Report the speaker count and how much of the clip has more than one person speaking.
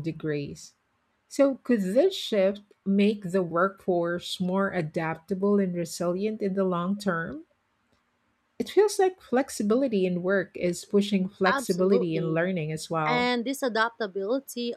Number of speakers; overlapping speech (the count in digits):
2, about 8%